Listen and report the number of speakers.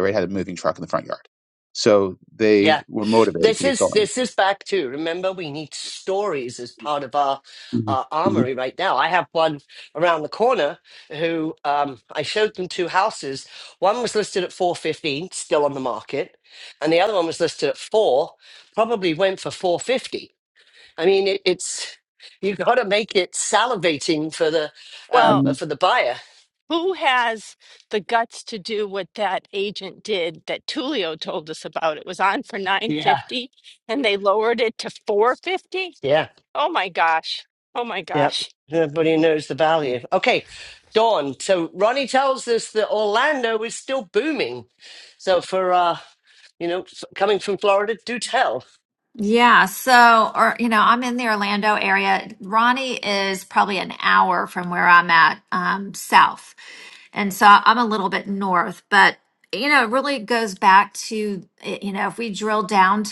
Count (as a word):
four